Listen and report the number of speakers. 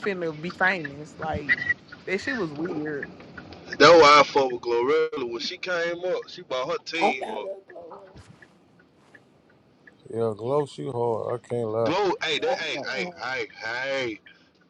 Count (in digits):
4